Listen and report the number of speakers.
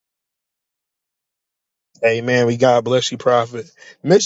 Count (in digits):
1